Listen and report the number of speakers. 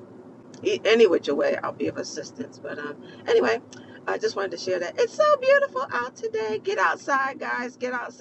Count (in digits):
1